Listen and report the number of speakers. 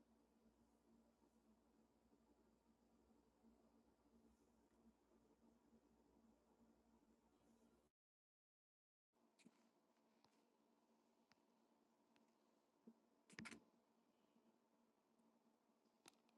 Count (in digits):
0